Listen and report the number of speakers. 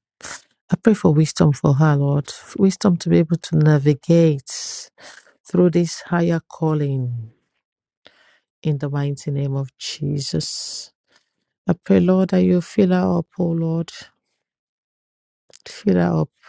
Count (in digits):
1